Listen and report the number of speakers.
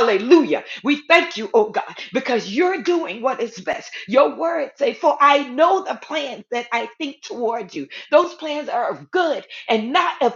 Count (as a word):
one